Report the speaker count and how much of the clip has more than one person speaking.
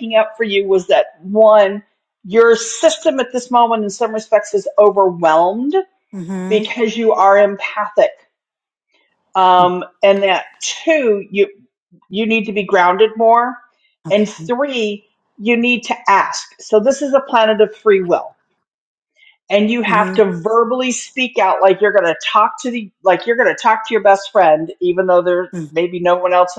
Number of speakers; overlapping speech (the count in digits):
2, about 3%